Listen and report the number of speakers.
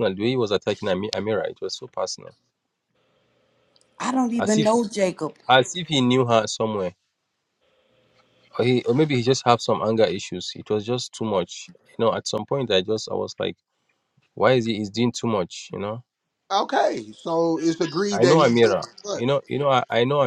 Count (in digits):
3